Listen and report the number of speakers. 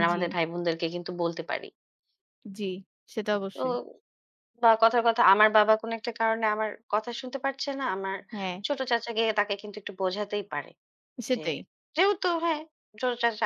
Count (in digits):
2